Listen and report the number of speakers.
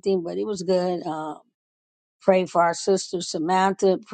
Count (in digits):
1